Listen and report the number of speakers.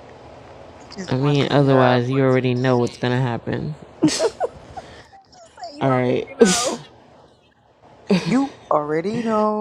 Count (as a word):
two